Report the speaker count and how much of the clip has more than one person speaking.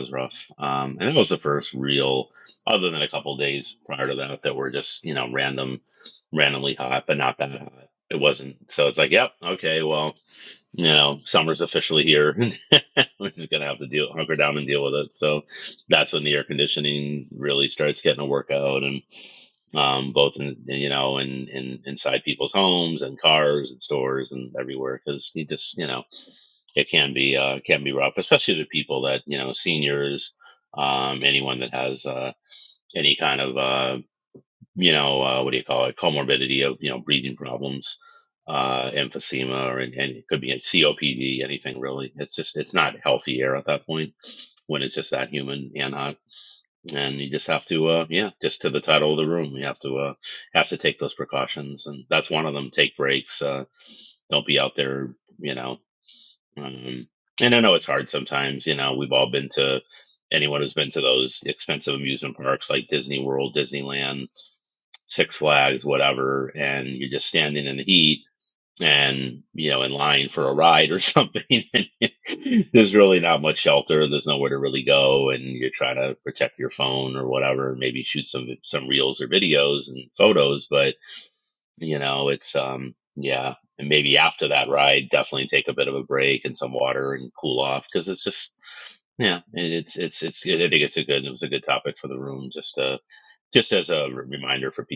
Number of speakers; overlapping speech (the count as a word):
one, no overlap